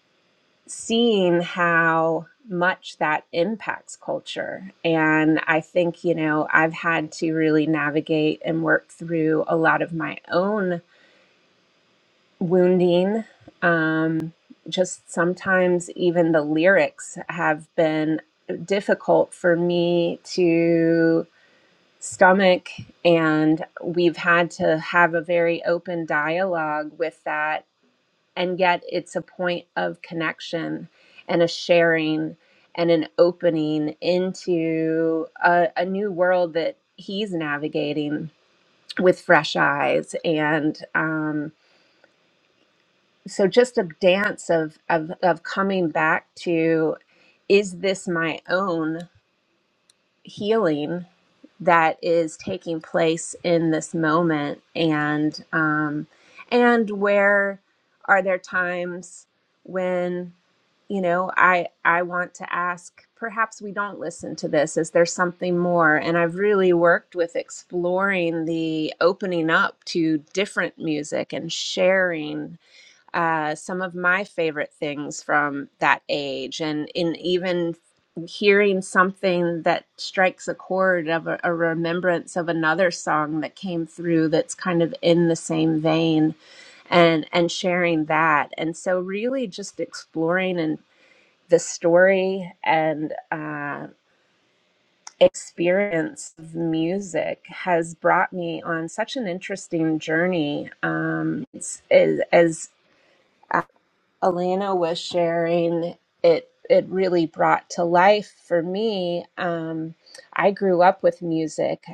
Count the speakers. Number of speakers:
1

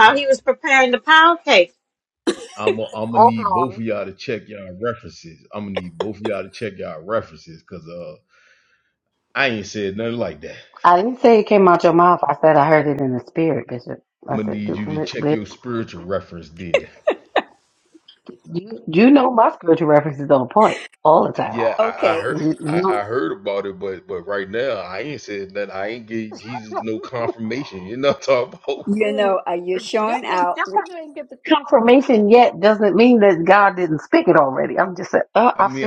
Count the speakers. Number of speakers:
4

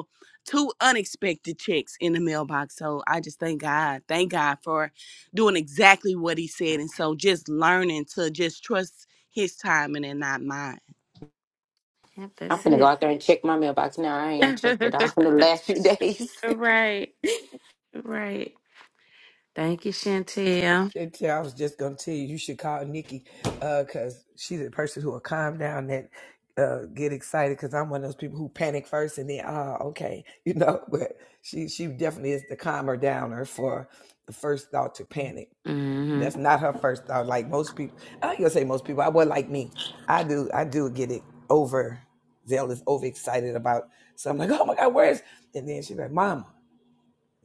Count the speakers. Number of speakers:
4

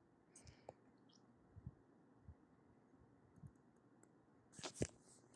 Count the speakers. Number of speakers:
0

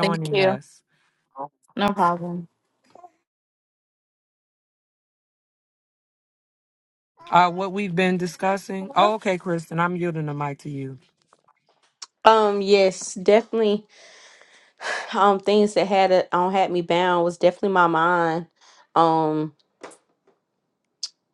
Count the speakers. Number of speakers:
3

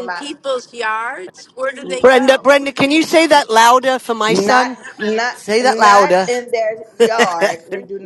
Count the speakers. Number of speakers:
3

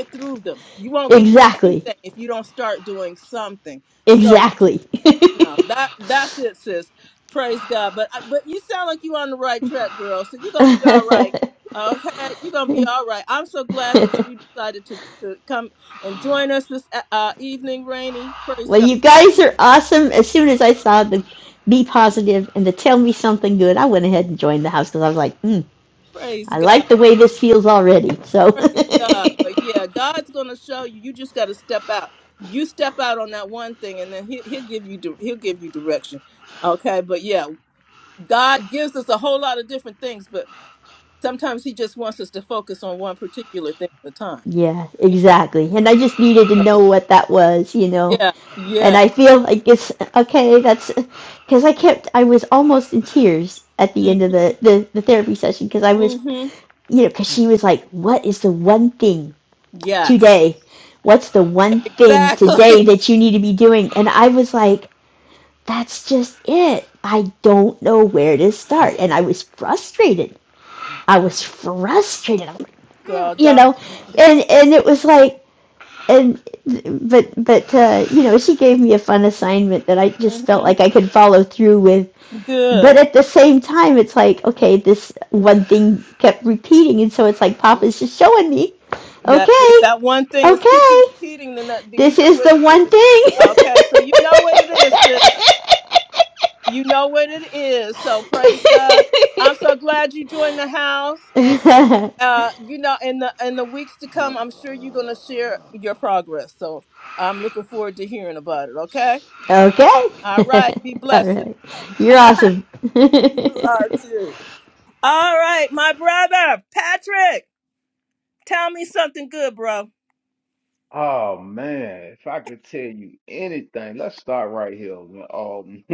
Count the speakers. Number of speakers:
3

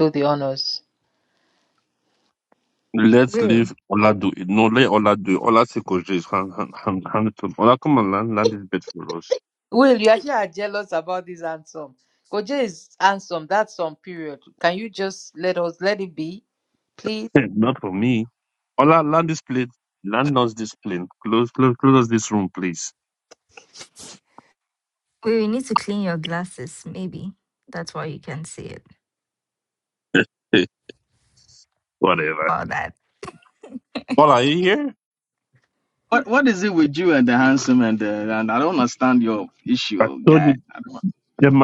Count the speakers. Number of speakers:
4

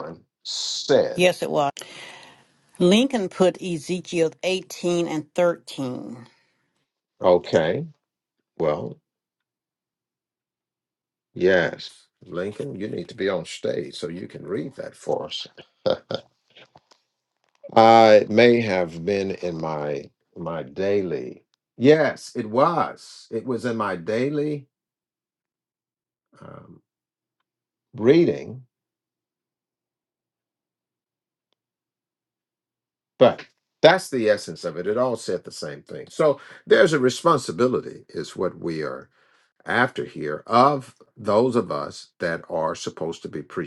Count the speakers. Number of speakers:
2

